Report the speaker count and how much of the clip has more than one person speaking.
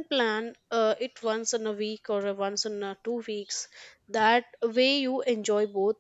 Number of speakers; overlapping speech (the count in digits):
1, no overlap